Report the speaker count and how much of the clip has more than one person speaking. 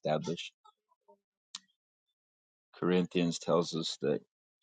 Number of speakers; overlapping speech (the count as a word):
one, no overlap